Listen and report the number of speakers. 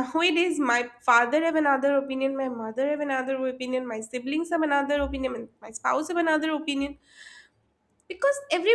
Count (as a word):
one